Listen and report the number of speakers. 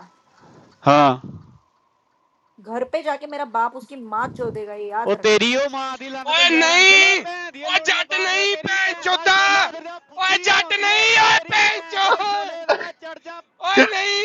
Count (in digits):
3